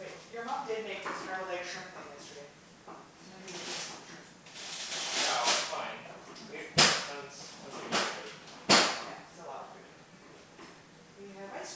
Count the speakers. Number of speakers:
2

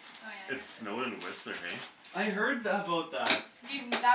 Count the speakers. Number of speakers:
3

